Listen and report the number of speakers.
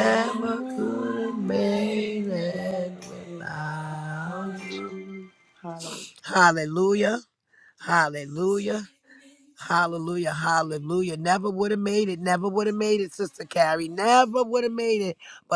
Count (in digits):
2